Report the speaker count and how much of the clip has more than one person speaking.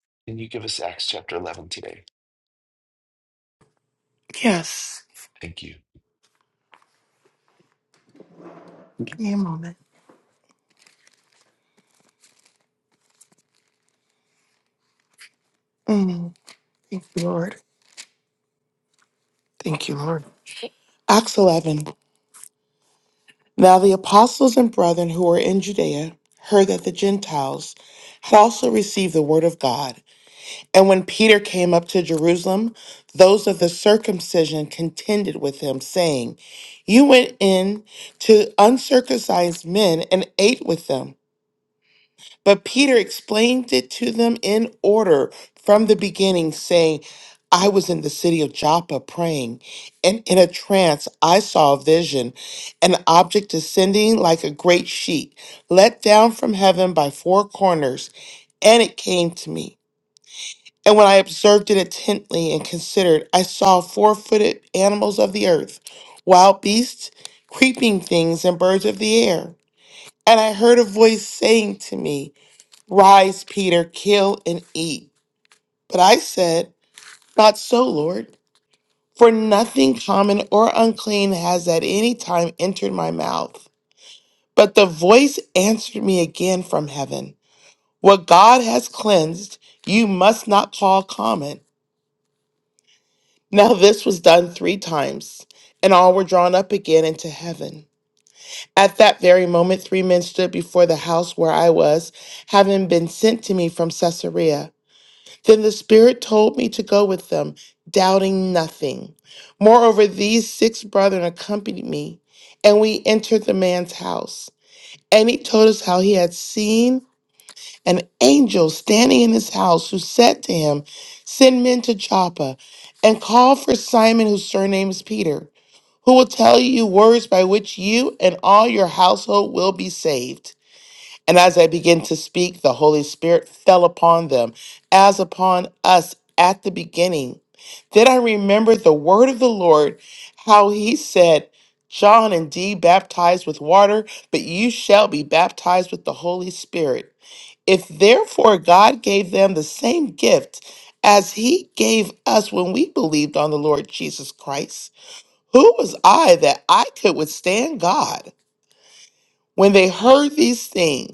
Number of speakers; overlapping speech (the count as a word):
two, no overlap